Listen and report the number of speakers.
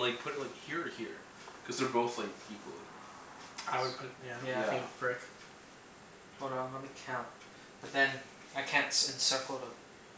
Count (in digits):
3